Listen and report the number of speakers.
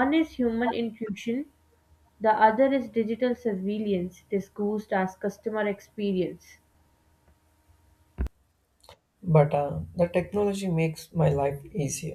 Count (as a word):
two